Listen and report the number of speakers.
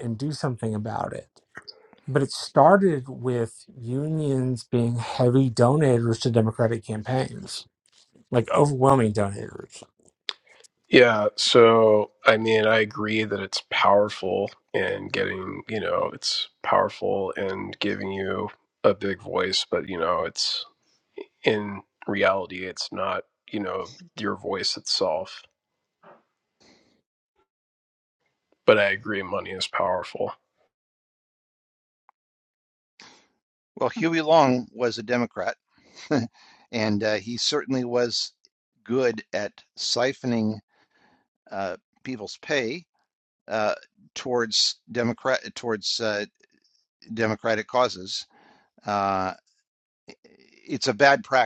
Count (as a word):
three